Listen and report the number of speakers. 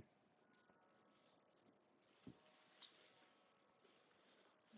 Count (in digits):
0